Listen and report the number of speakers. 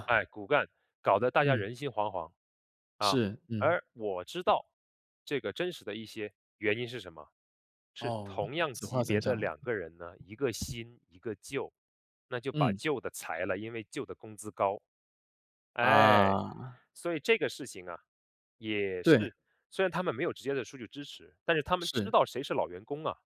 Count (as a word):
two